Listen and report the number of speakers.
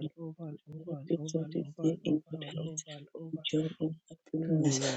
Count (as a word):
two